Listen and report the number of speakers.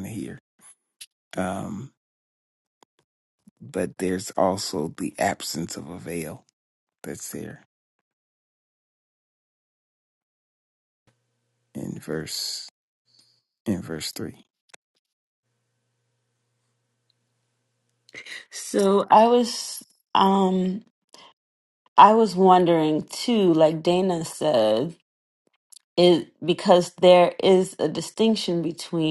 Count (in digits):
2